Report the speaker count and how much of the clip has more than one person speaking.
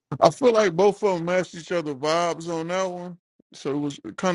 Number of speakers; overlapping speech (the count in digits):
1, no overlap